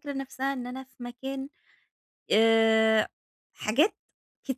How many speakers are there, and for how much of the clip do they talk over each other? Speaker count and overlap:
1, no overlap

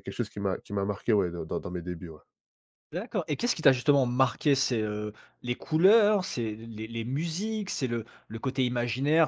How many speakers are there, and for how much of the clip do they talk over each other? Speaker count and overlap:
2, no overlap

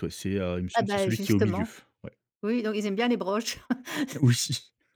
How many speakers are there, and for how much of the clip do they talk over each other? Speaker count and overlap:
2, about 19%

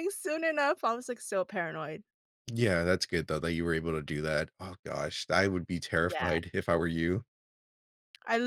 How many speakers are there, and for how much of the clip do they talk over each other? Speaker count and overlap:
2, about 4%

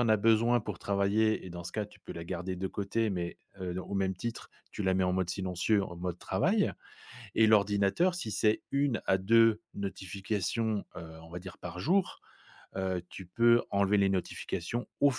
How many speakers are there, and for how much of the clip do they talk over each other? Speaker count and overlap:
1, no overlap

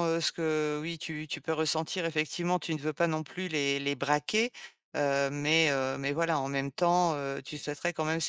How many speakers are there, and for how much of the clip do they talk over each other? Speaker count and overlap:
1, no overlap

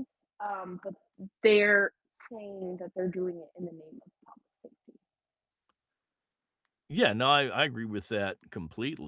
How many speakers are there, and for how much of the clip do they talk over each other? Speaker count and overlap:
2, no overlap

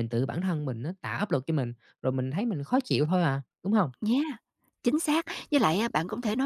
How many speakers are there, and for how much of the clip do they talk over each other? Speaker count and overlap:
2, no overlap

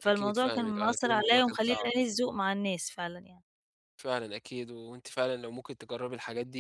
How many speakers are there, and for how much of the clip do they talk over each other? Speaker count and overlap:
2, about 28%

